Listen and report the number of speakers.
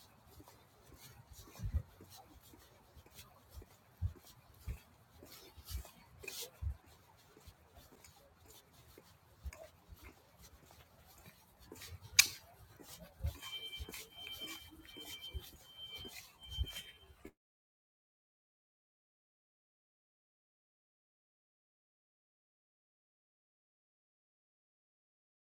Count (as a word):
zero